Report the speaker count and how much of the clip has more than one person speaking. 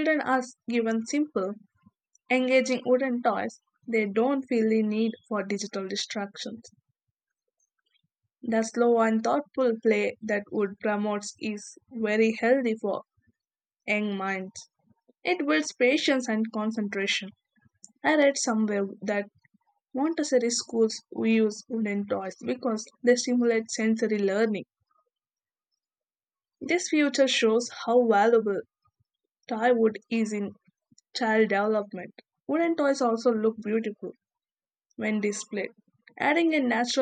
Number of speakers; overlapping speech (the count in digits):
1, no overlap